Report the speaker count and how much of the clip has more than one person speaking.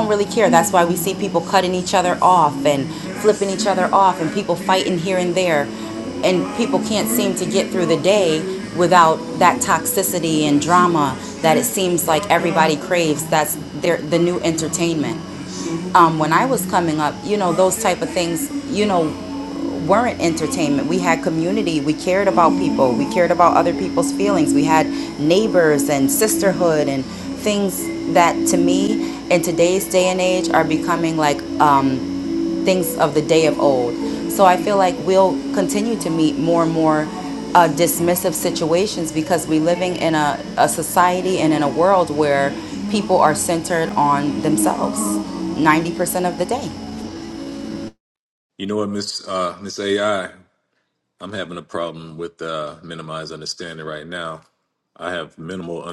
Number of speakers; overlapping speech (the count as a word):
two, no overlap